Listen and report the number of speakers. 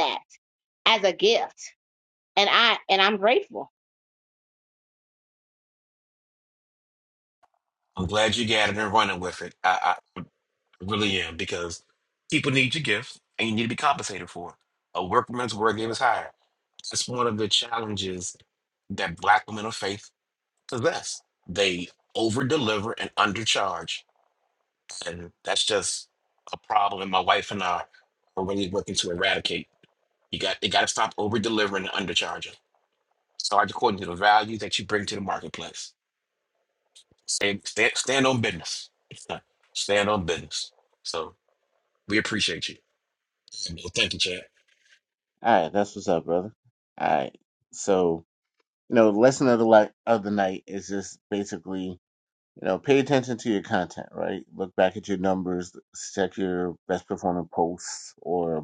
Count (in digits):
3